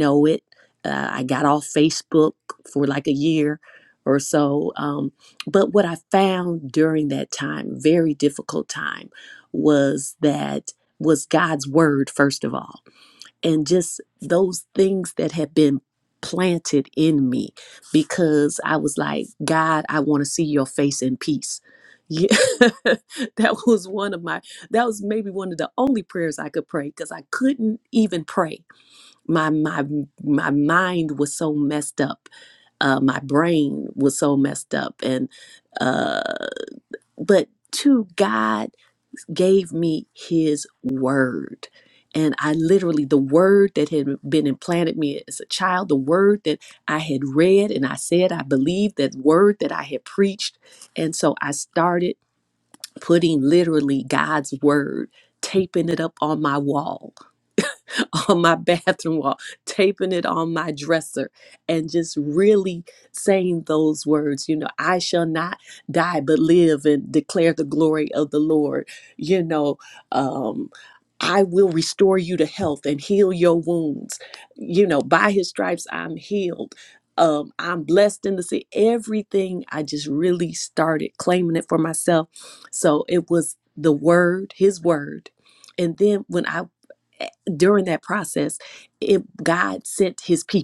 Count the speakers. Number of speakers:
1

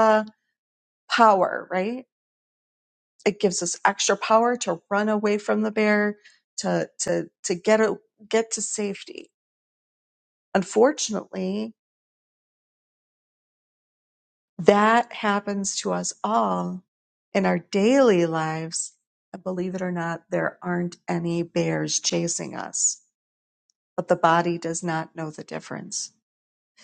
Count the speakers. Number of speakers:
1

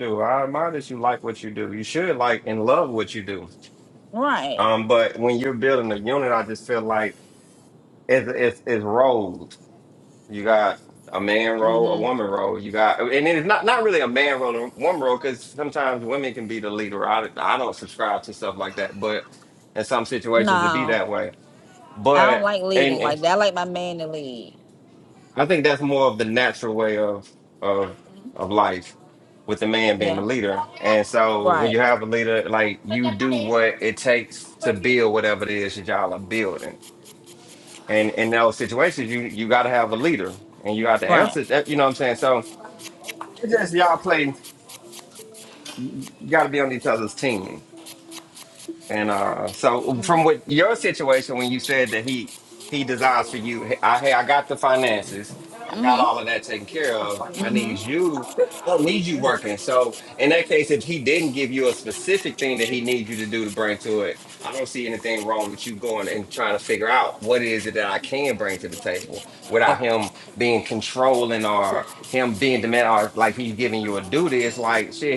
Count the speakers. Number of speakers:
2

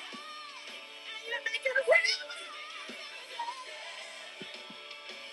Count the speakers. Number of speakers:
0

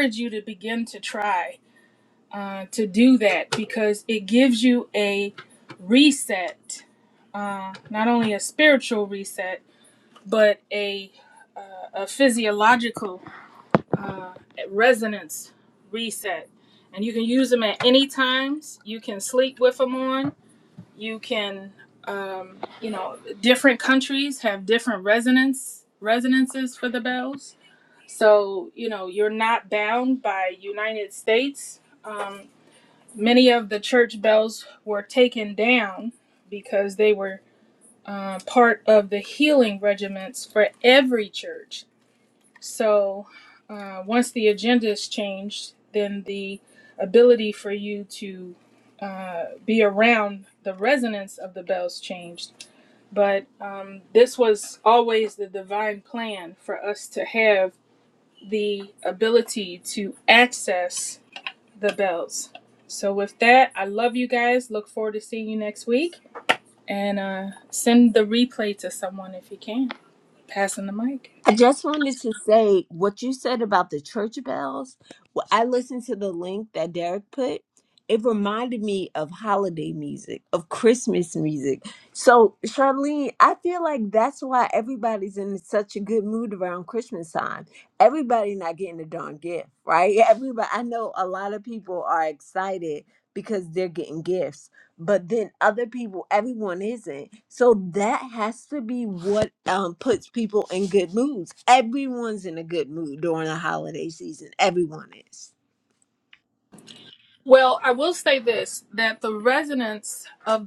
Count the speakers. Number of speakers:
2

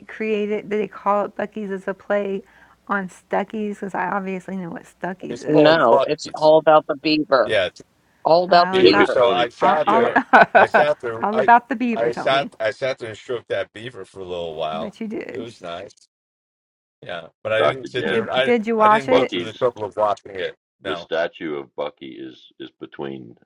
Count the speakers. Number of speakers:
4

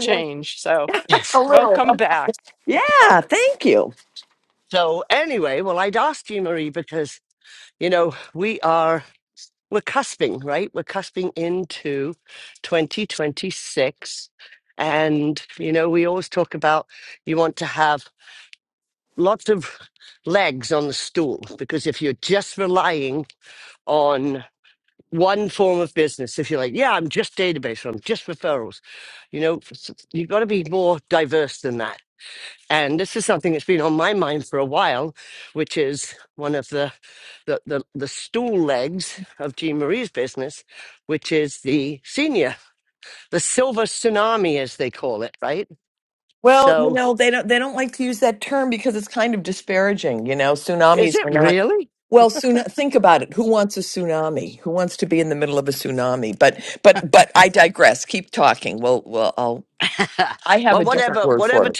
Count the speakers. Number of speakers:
3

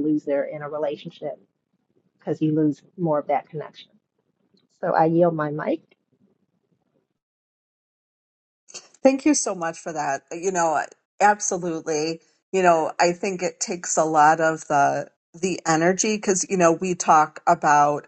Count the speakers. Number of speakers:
2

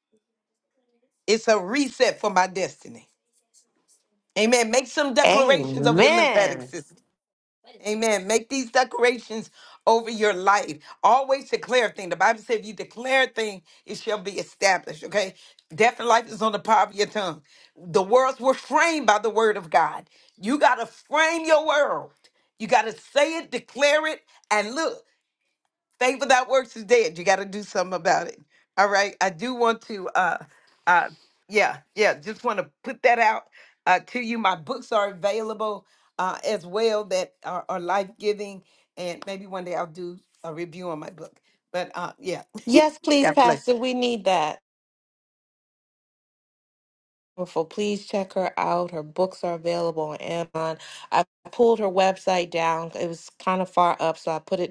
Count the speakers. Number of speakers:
2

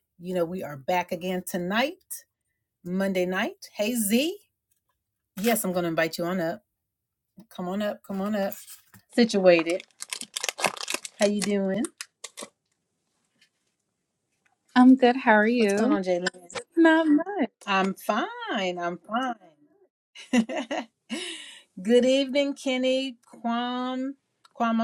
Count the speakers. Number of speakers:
2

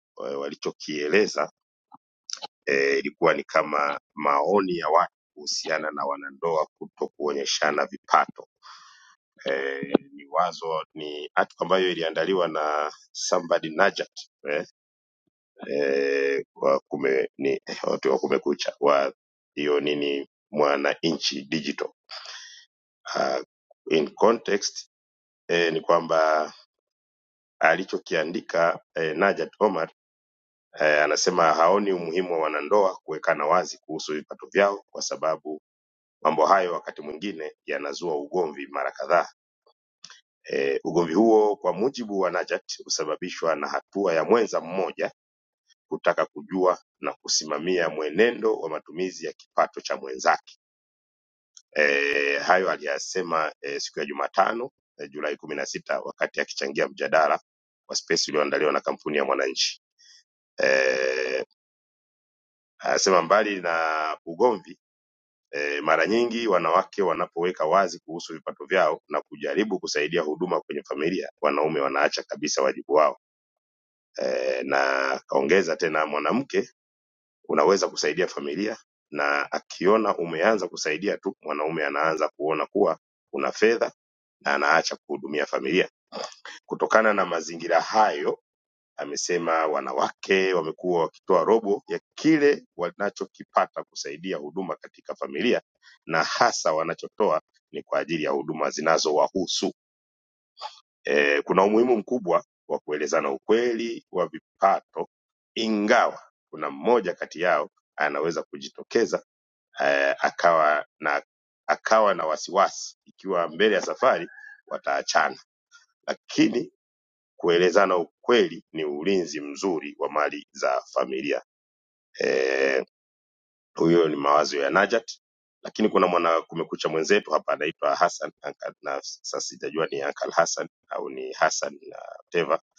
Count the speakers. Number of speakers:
1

